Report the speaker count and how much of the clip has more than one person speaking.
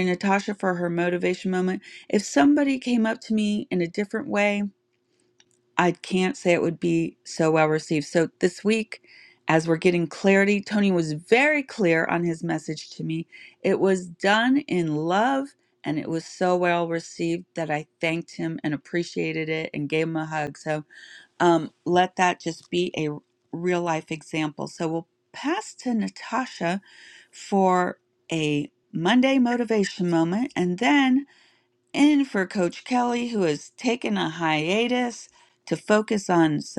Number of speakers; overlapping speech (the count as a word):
one, no overlap